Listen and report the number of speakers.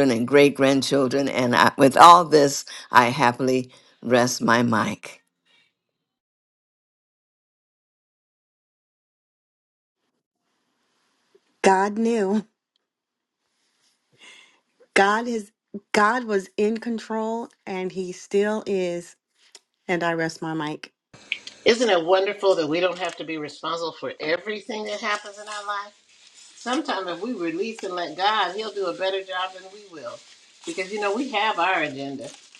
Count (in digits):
3